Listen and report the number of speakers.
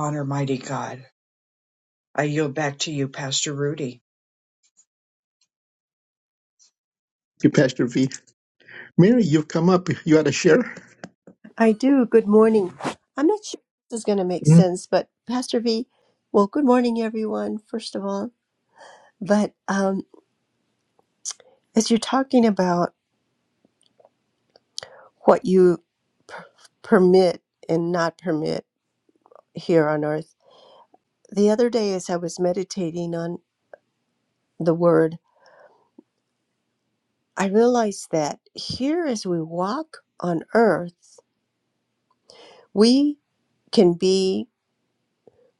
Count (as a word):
three